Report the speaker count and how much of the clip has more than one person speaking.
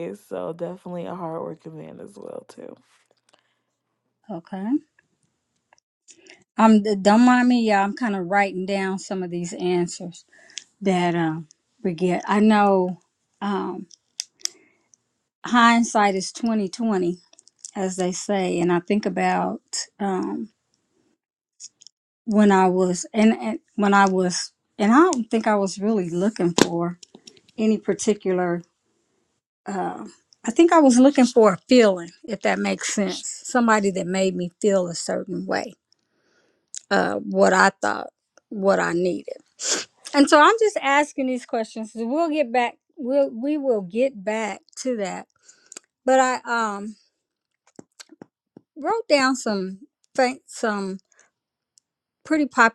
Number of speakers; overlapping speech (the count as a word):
two, no overlap